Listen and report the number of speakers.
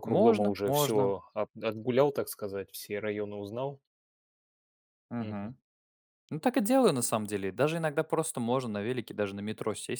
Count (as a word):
two